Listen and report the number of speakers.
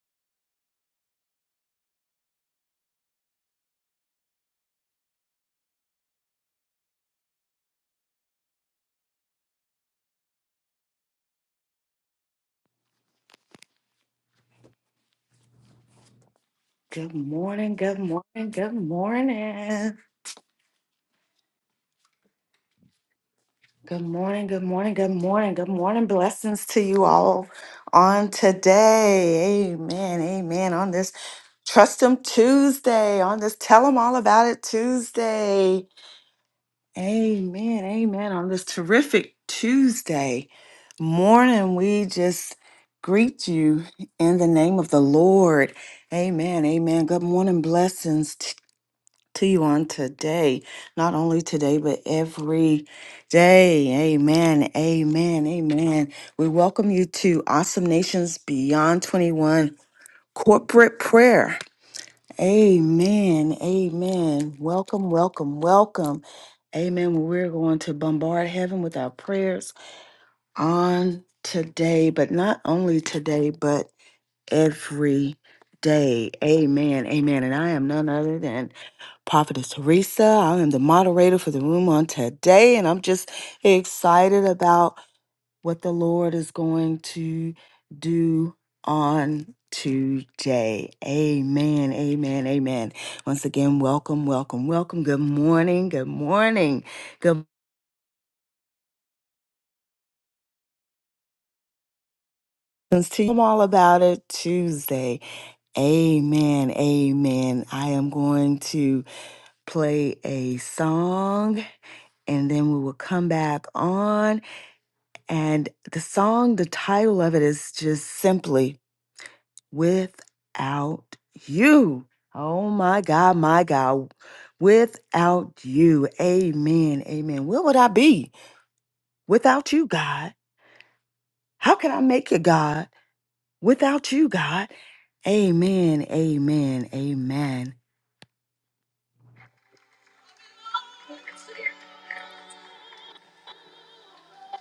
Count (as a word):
one